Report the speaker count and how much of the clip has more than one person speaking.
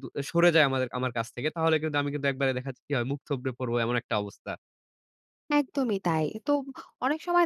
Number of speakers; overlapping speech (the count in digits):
2, no overlap